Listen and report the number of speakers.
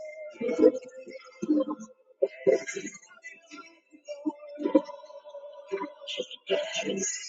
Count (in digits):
0